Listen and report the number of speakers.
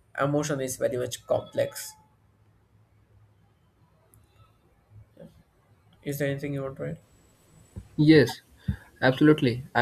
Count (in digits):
2